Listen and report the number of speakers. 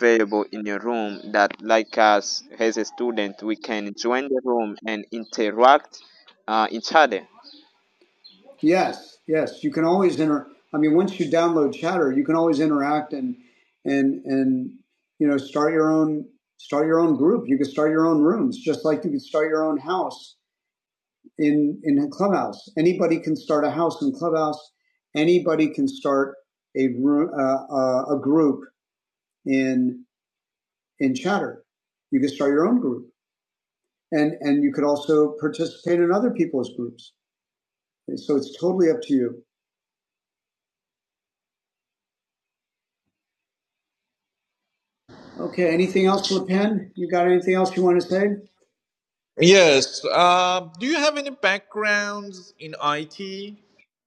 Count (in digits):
3